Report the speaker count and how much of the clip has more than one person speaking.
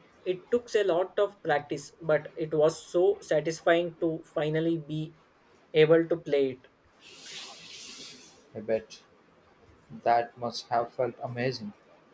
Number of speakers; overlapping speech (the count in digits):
2, no overlap